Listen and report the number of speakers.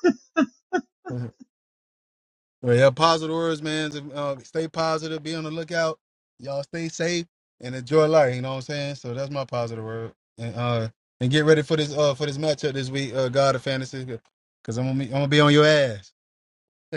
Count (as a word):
one